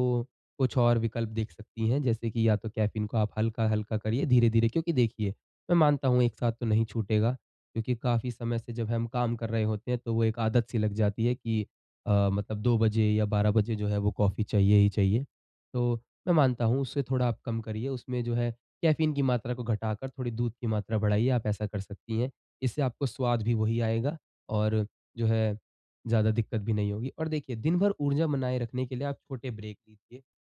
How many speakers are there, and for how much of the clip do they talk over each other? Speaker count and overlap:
1, no overlap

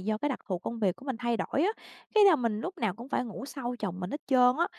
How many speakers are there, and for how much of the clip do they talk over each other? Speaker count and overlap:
1, no overlap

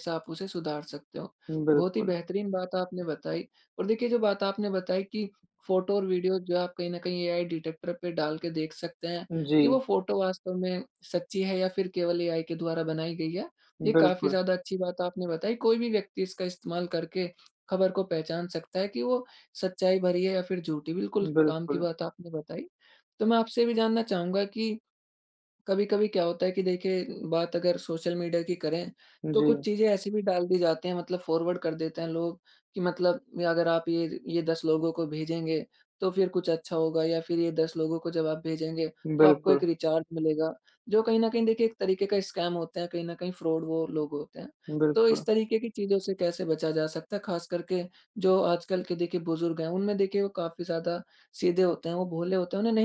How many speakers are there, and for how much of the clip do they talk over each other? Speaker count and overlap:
2, about 5%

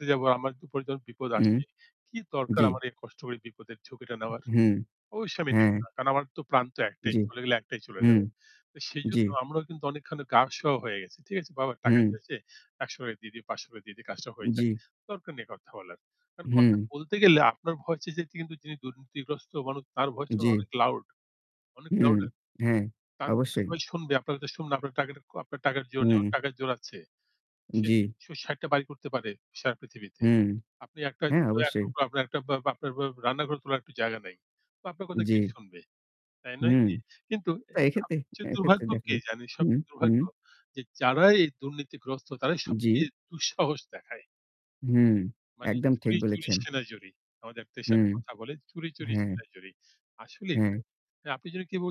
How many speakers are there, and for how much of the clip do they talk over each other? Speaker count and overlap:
2, about 15%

